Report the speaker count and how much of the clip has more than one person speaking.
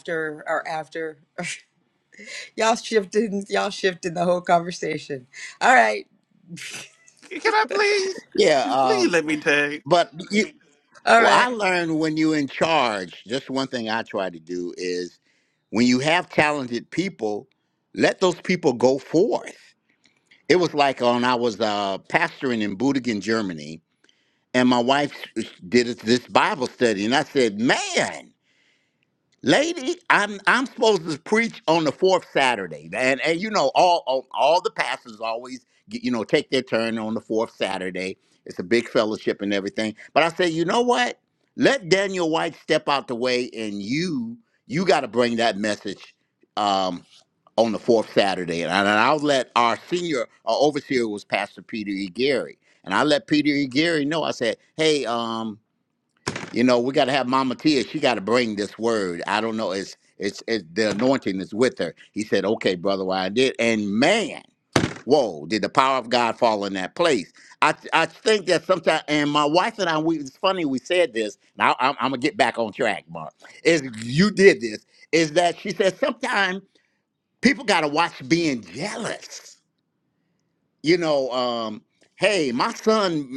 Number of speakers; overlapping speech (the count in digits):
3, about 1%